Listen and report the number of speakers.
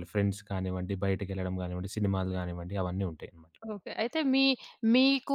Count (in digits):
2